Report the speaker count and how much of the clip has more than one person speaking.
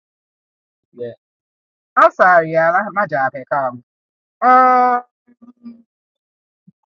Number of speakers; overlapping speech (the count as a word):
one, no overlap